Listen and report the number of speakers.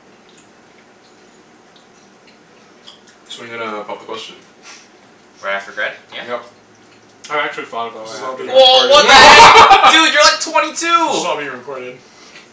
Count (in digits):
4